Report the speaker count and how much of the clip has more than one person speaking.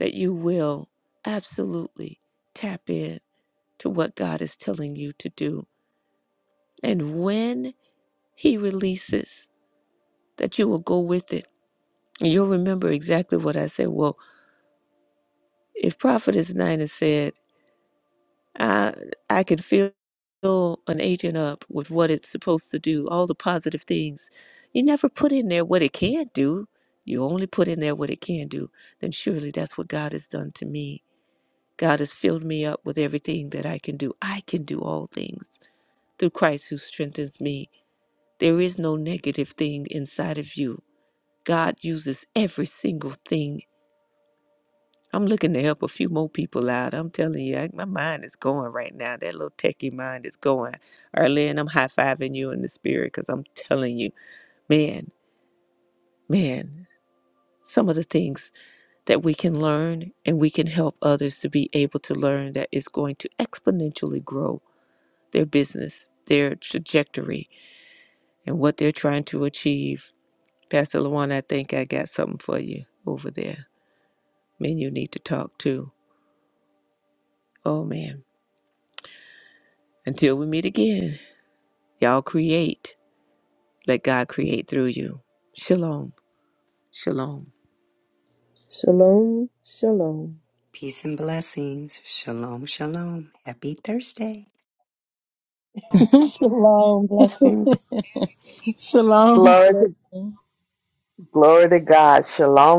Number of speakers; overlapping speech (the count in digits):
6, about 1%